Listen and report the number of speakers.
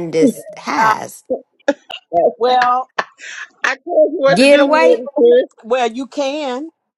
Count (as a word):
three